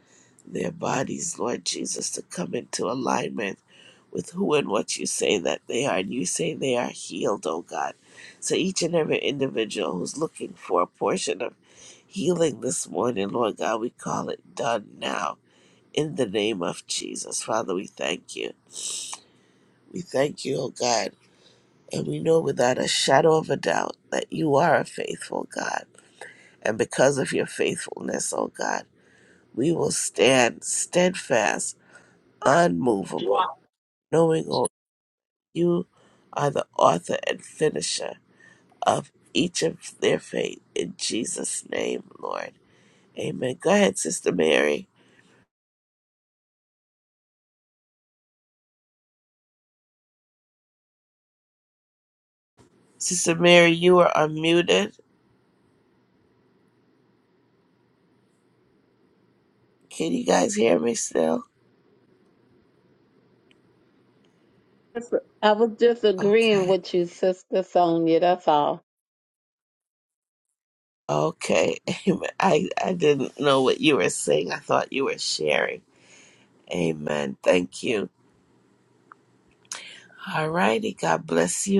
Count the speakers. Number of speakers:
2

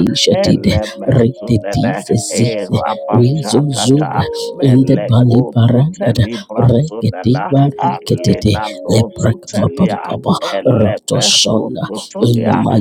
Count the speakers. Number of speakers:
2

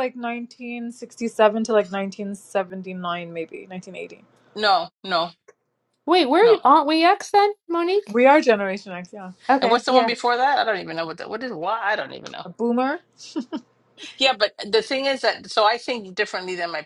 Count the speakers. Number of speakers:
3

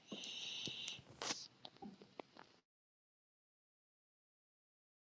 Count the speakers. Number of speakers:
0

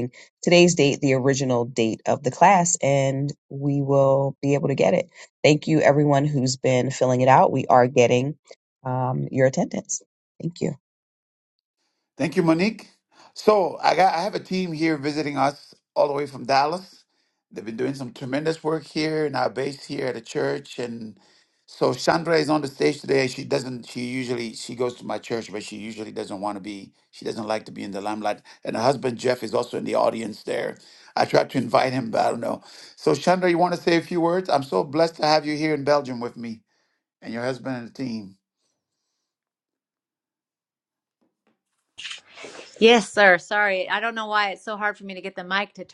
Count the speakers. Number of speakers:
3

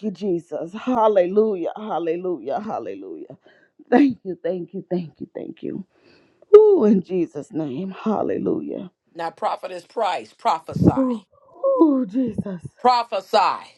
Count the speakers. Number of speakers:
2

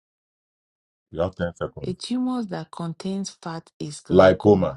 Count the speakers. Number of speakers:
2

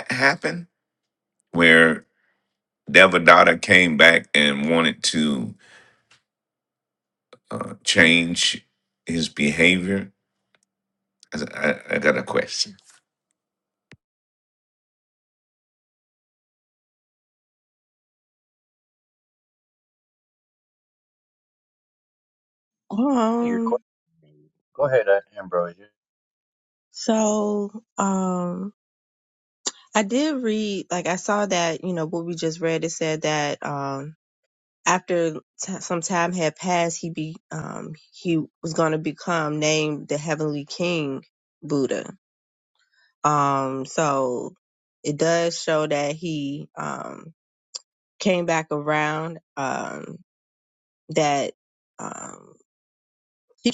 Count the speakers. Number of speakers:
3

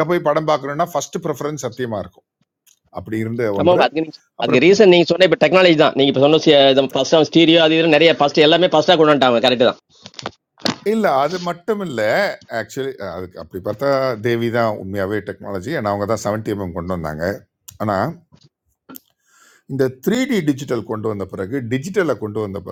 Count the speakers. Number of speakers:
2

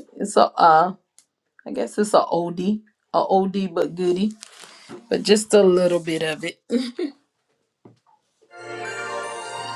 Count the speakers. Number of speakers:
1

